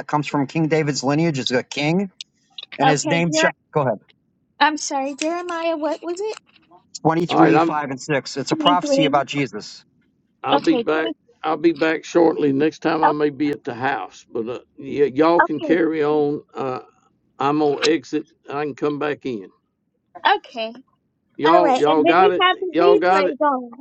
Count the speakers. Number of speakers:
3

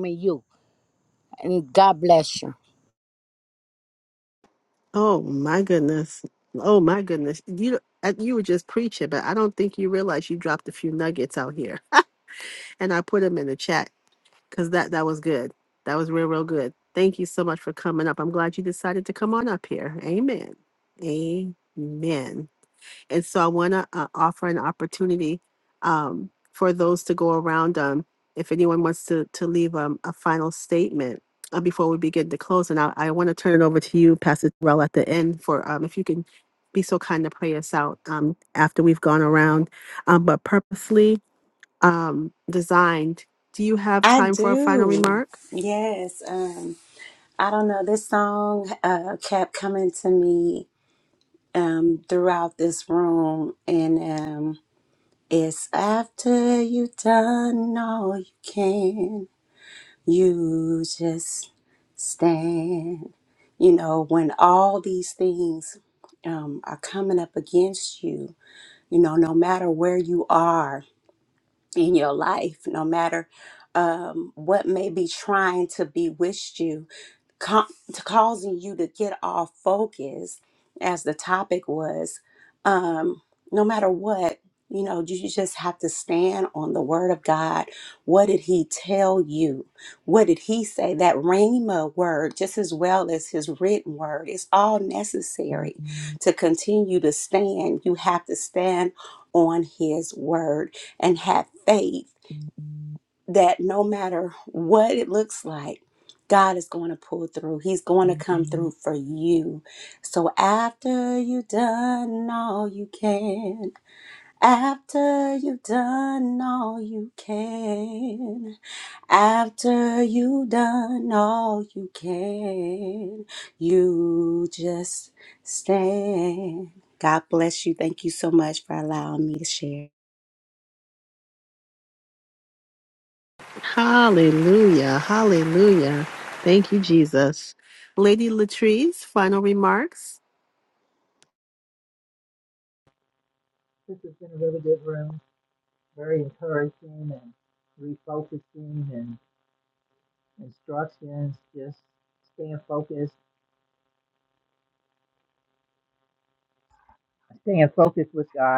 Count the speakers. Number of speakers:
4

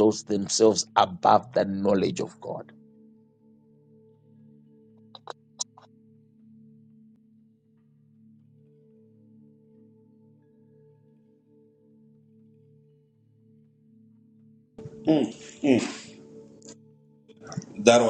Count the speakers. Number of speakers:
2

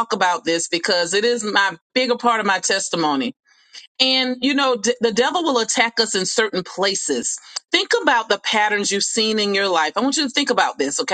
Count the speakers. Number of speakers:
1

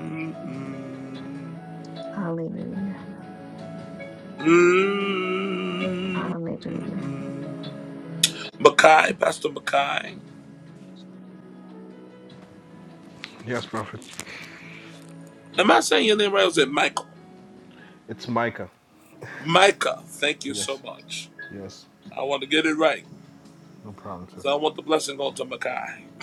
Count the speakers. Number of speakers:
3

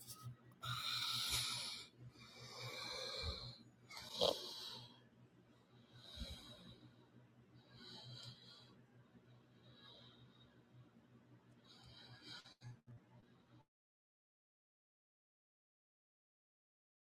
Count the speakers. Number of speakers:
0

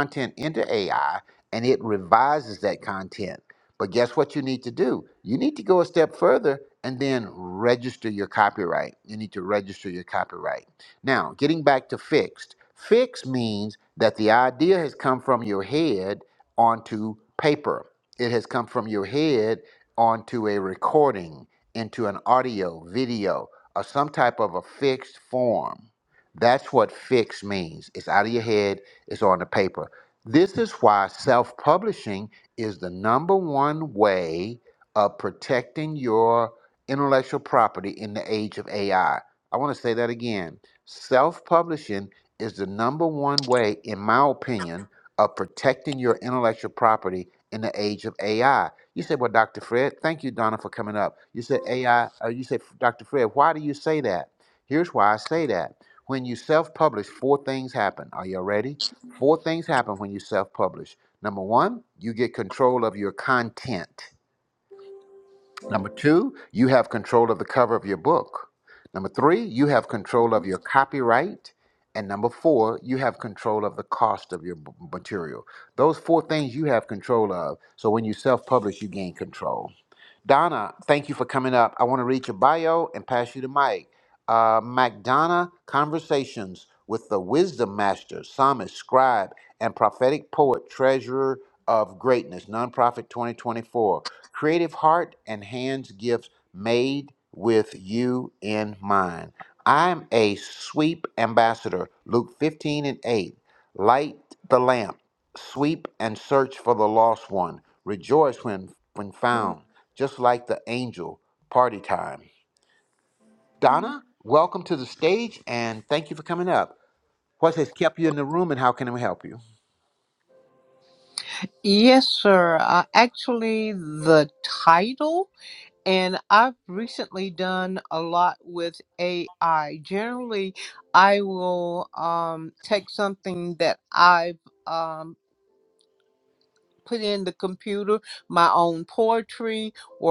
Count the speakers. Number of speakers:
2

